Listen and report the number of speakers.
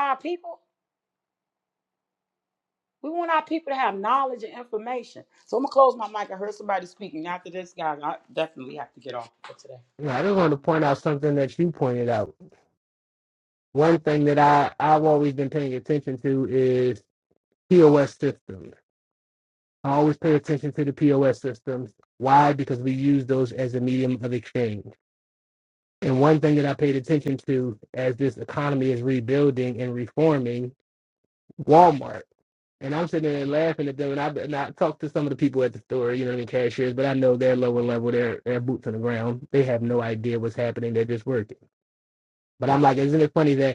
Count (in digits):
2